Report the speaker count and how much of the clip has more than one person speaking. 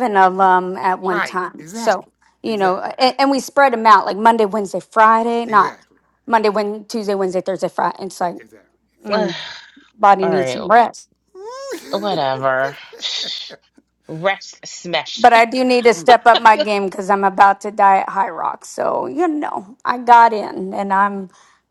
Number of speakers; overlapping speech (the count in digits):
3, about 12%